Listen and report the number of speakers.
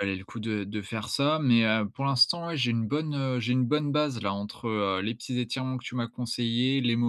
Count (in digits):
1